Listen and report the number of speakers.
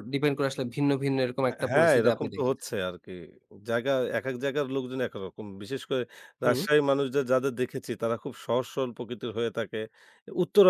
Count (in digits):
2